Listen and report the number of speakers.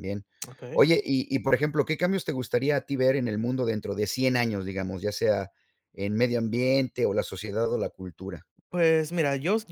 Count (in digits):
2